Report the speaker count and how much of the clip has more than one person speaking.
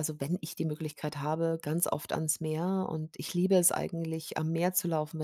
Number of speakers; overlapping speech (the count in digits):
1, no overlap